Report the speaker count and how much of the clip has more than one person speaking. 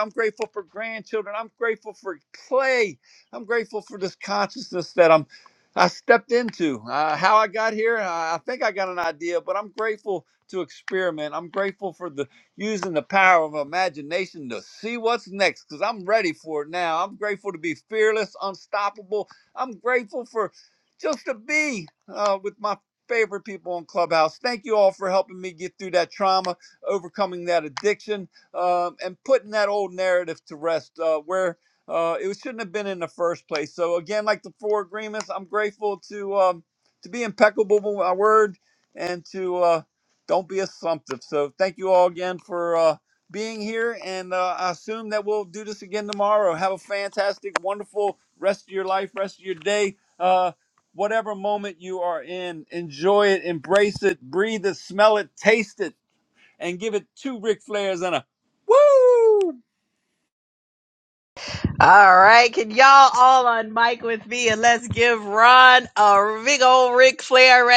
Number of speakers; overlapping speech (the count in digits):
2, no overlap